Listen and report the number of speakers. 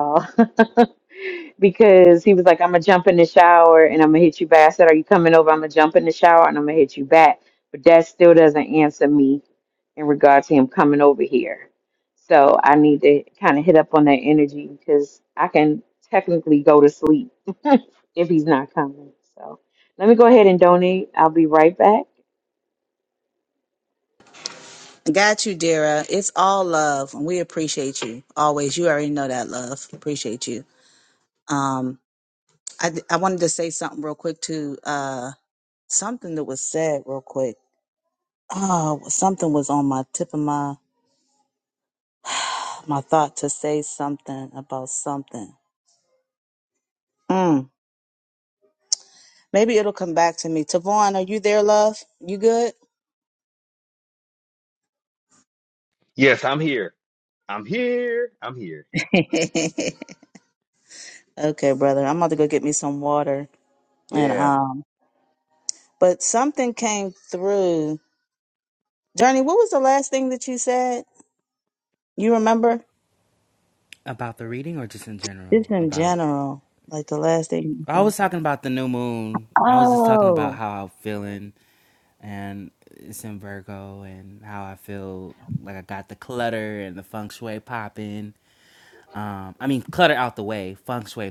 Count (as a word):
four